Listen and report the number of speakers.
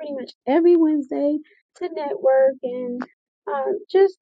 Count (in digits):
1